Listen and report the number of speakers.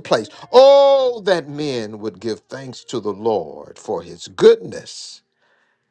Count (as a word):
one